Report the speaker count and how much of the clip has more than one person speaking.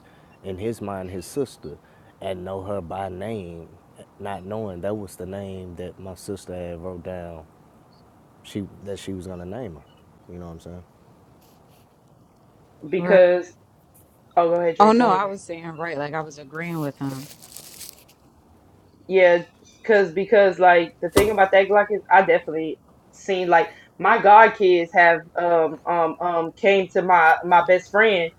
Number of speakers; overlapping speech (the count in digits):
3, about 2%